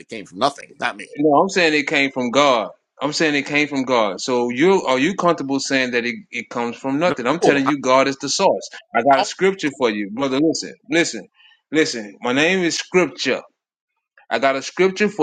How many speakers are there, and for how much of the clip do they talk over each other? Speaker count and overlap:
two, about 5%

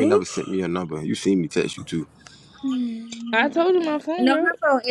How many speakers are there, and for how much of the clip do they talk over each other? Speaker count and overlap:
three, about 13%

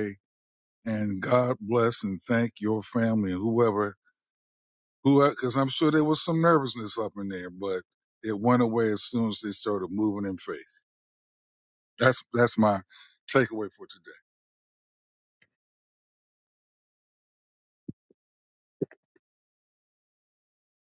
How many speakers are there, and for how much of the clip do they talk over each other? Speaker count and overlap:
one, no overlap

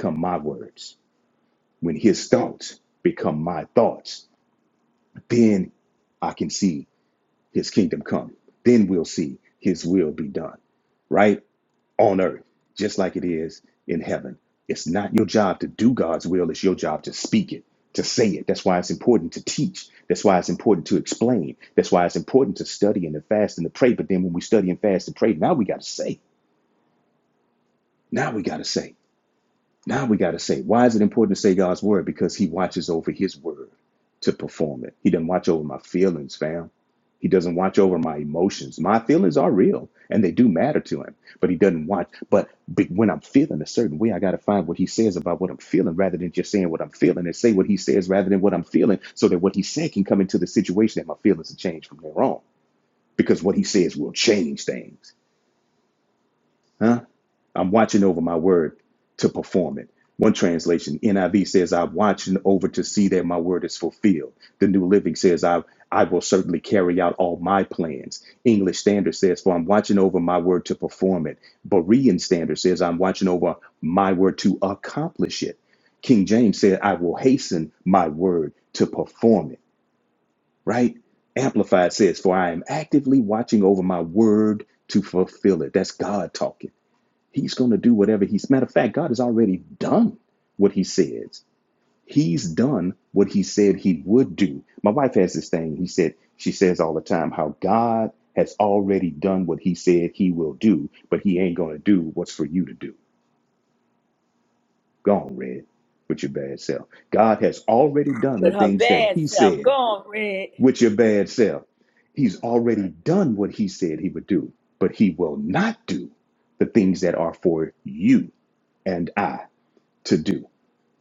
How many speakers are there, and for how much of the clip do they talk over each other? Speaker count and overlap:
two, about 1%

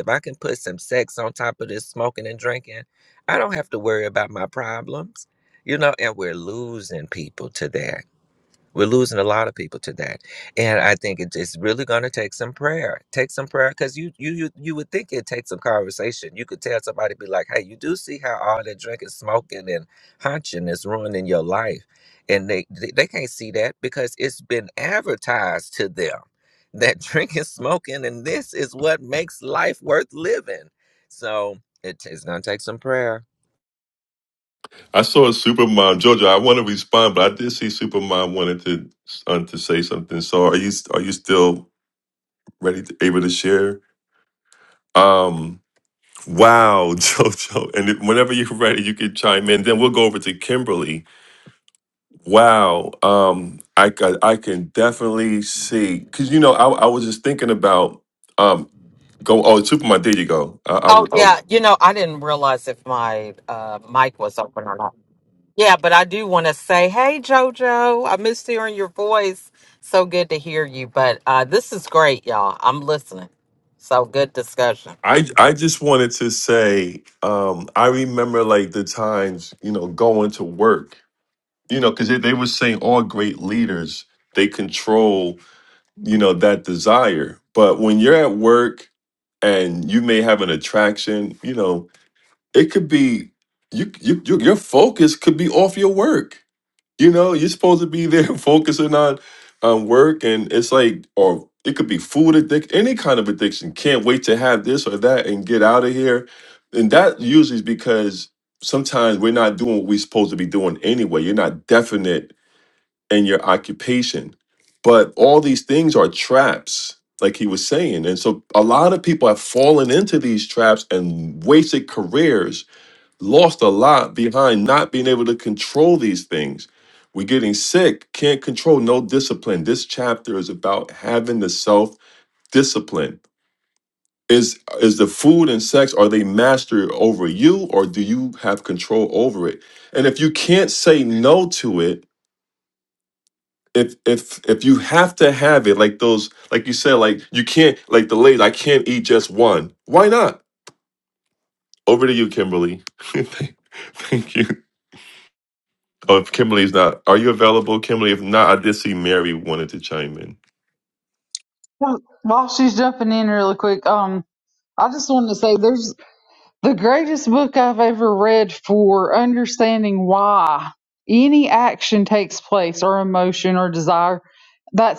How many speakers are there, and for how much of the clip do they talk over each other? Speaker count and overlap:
four, under 1%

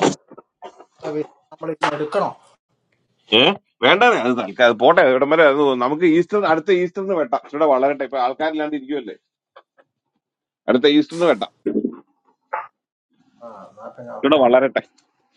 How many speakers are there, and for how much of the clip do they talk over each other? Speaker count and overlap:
two, about 1%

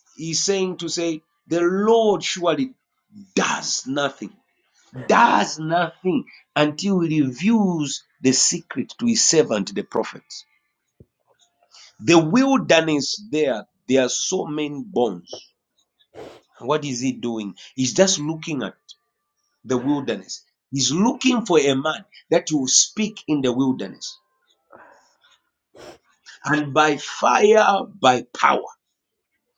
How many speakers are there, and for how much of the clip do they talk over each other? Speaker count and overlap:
one, no overlap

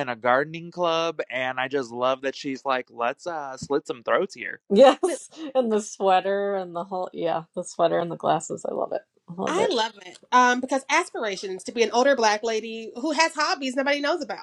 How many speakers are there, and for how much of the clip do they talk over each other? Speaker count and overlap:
three, about 2%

